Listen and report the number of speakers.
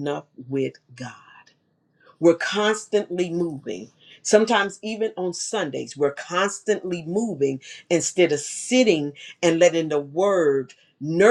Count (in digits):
1